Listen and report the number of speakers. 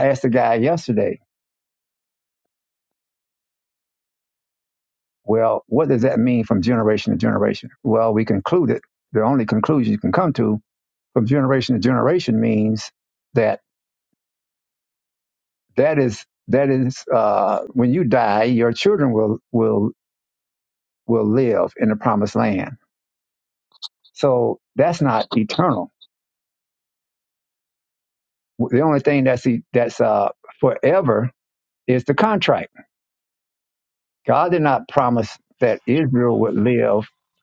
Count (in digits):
1